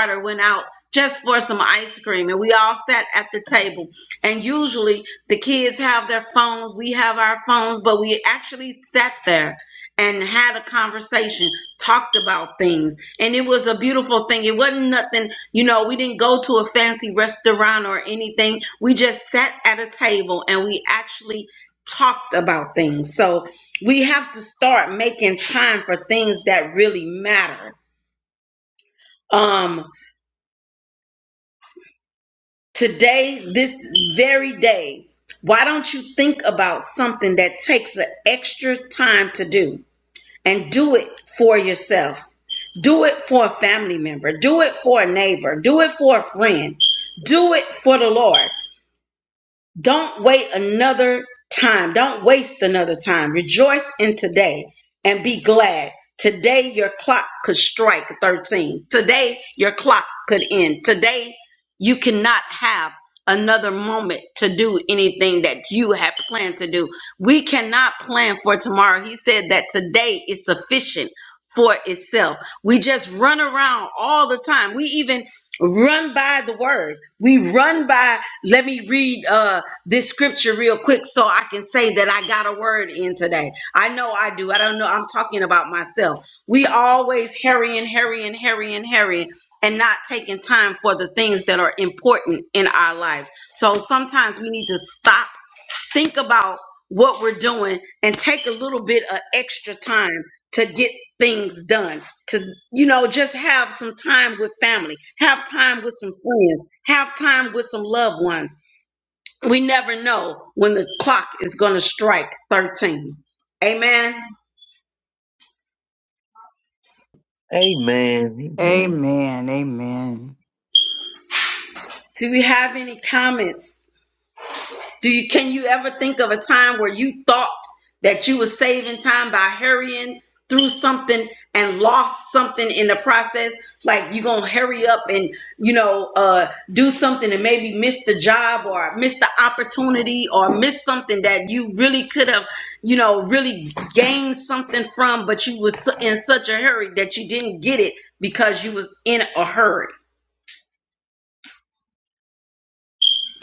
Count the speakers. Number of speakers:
three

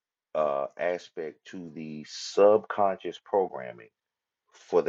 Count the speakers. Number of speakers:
one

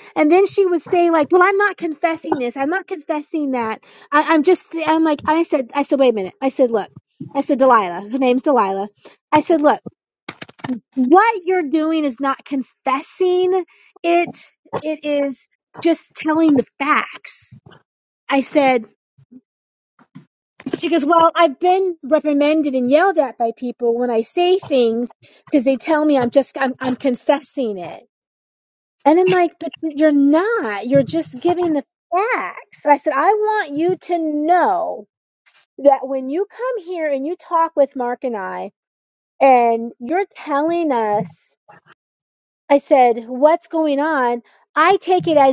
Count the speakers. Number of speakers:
one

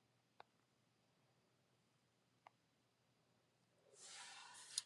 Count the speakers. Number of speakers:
zero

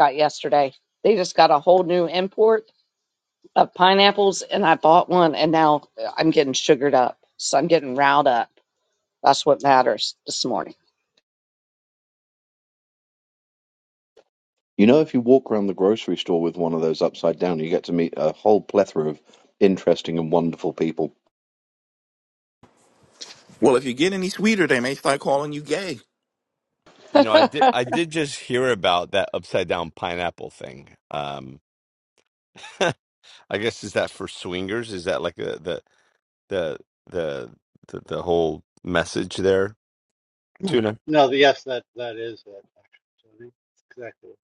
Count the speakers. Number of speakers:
five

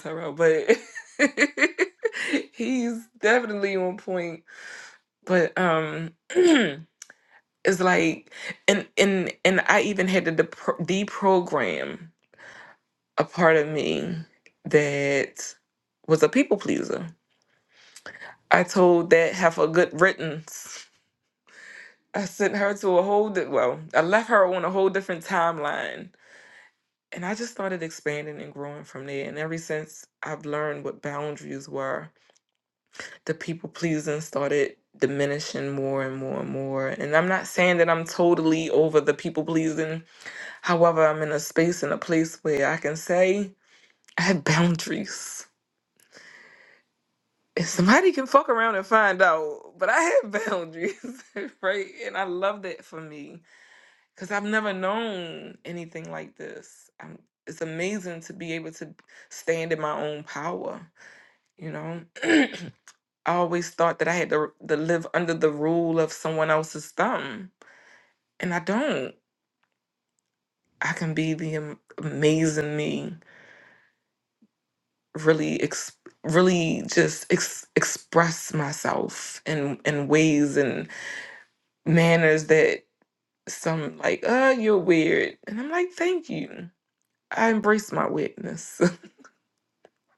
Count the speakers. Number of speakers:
one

